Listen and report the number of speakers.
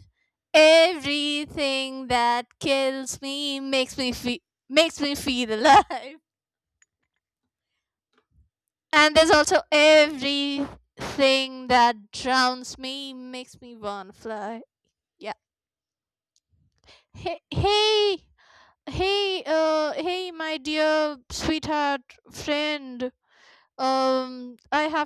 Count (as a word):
one